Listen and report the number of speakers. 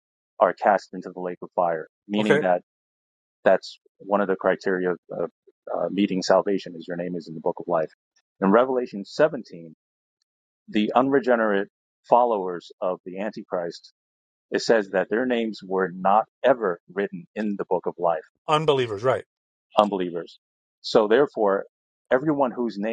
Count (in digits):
2